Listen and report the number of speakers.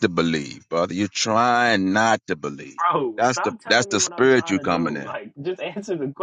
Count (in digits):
2